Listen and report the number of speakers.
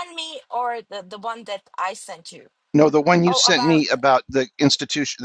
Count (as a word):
two